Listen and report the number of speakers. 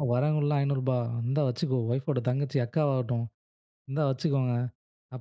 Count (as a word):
one